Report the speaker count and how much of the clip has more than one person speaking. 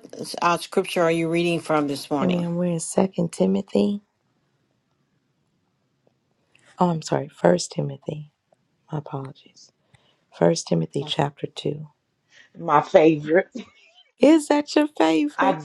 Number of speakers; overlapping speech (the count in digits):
3, about 4%